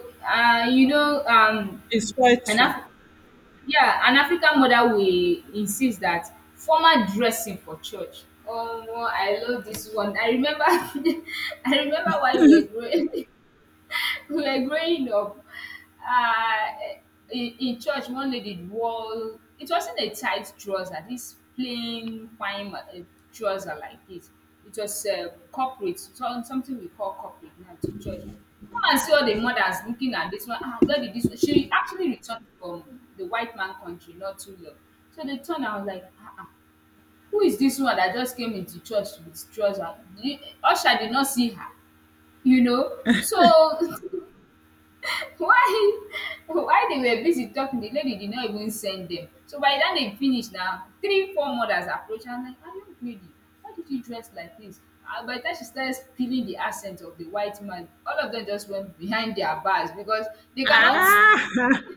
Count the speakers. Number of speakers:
two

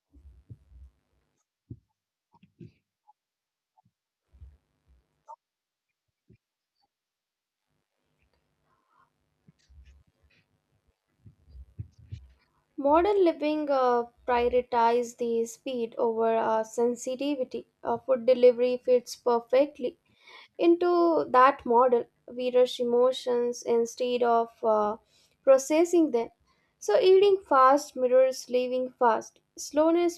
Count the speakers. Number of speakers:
one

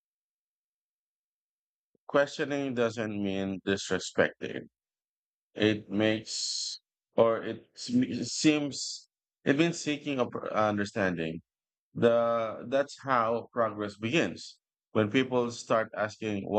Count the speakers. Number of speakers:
one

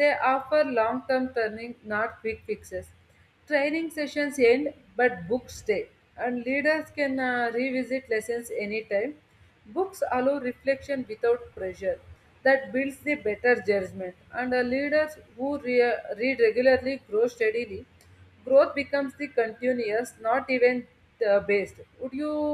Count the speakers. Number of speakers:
one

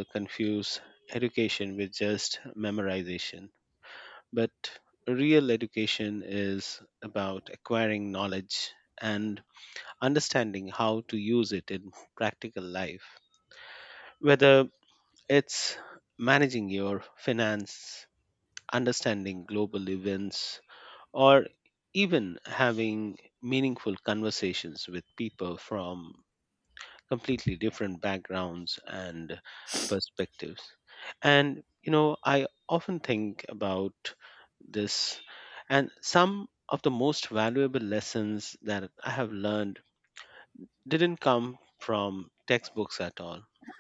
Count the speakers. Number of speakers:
one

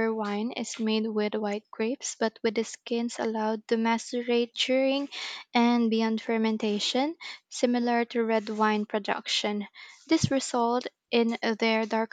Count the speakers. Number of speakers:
one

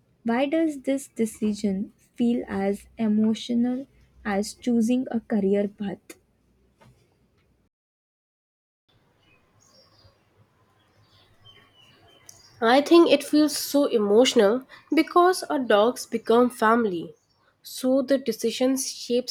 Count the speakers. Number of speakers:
two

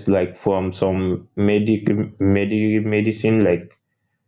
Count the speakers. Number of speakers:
one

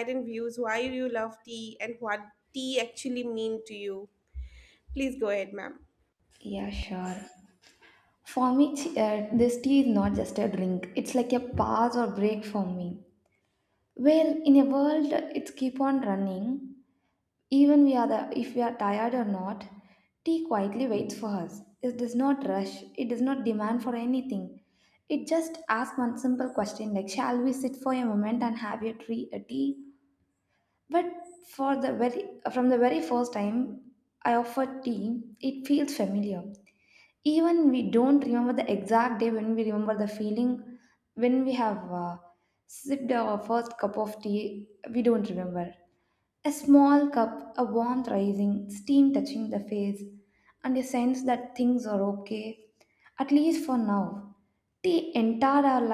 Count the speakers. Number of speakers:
two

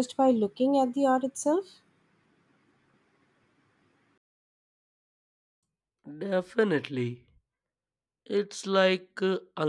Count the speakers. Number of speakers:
two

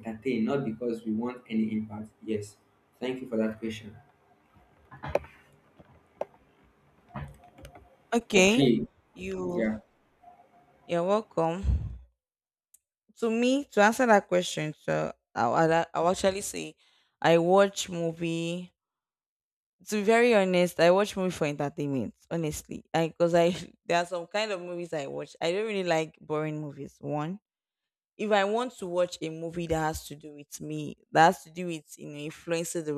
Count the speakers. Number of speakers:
two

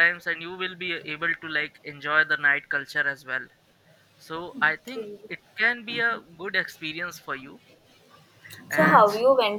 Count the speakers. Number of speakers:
two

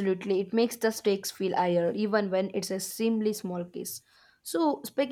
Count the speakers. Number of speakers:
one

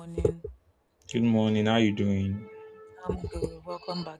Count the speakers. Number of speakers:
two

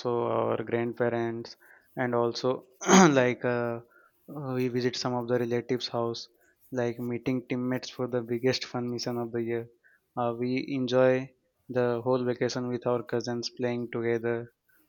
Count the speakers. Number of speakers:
one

